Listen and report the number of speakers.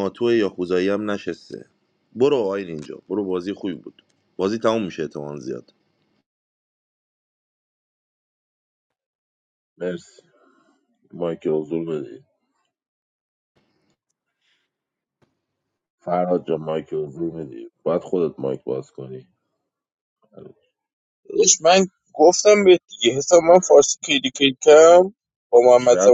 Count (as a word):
three